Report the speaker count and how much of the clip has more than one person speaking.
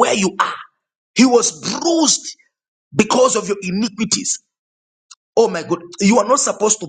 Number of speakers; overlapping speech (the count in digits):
1, no overlap